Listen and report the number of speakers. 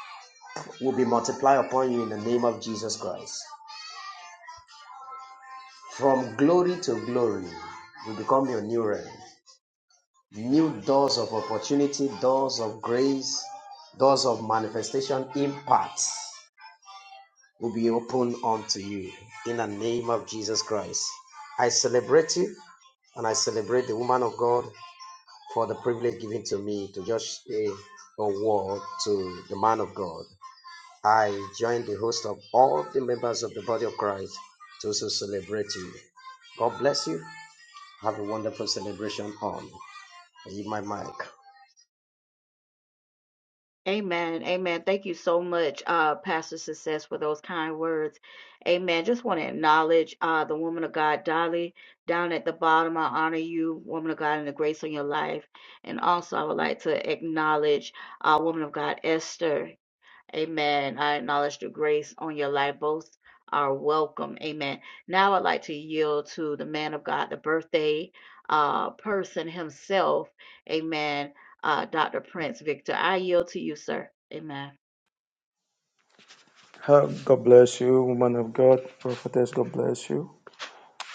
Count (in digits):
3